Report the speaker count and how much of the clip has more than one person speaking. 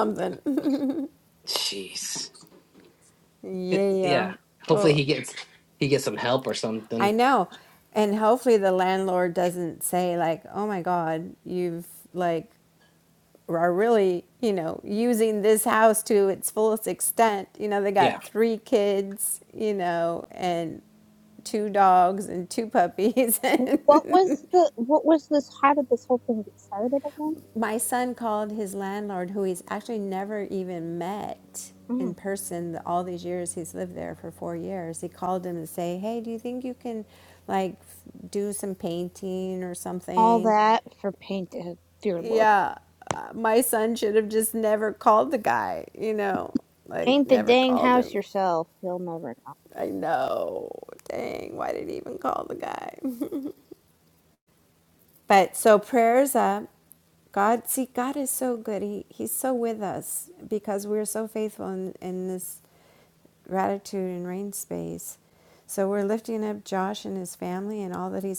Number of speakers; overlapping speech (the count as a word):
three, about 5%